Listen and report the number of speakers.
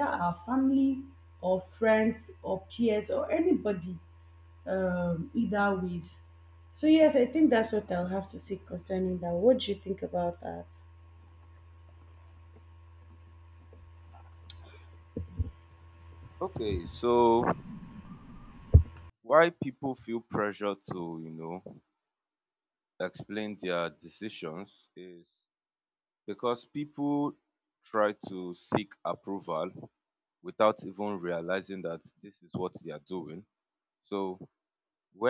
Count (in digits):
2